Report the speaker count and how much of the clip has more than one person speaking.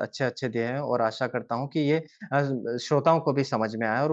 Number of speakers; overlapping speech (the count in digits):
1, no overlap